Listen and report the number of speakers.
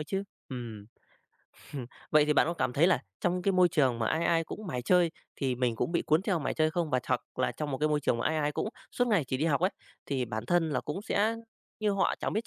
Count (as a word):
one